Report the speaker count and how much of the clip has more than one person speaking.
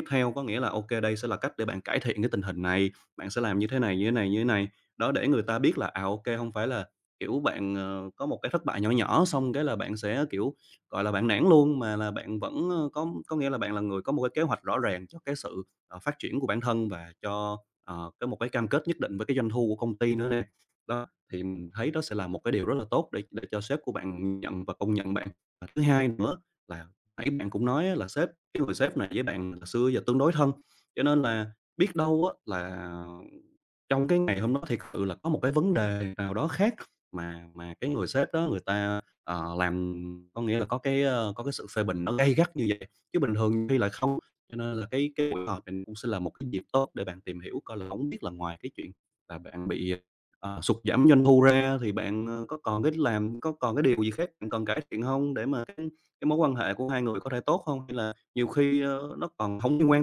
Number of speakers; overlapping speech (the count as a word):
one, no overlap